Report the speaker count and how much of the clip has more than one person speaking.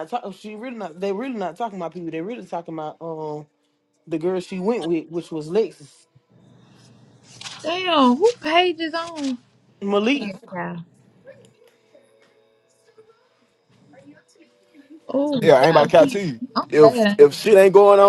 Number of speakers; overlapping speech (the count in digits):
3, about 7%